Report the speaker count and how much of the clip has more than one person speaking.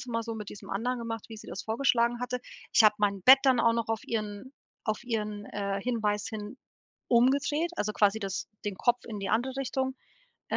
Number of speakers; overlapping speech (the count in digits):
1, no overlap